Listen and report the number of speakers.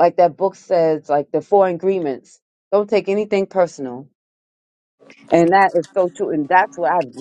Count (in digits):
1